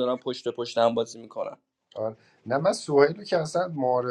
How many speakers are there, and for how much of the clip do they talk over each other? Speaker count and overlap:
two, no overlap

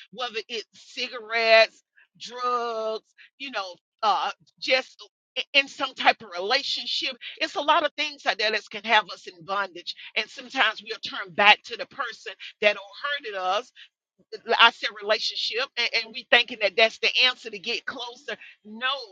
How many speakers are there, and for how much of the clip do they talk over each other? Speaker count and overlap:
one, no overlap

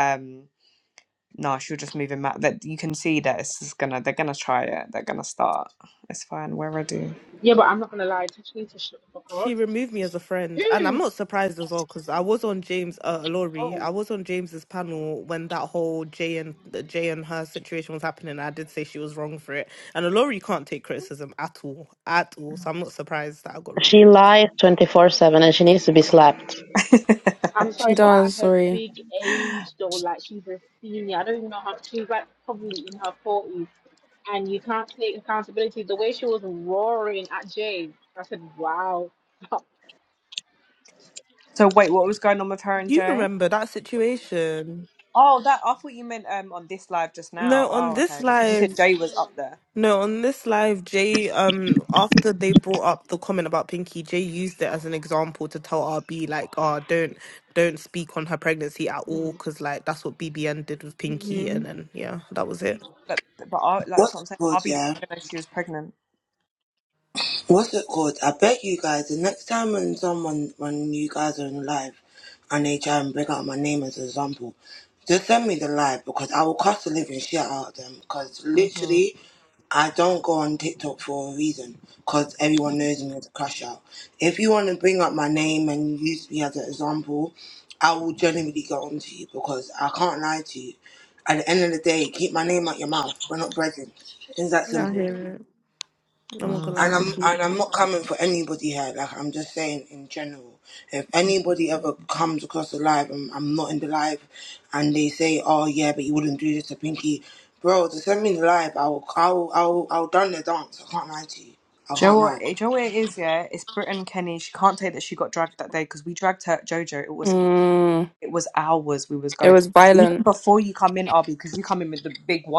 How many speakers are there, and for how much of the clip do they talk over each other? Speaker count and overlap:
six, about 6%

